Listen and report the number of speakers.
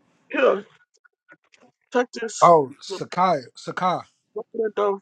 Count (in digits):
2